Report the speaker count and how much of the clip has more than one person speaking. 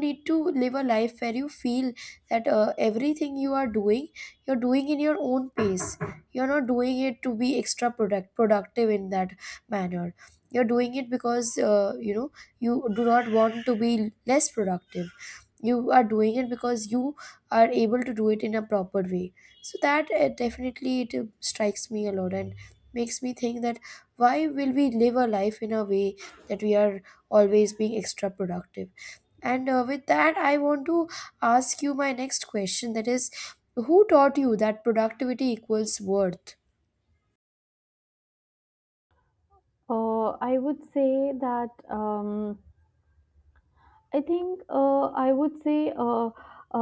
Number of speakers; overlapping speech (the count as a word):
two, no overlap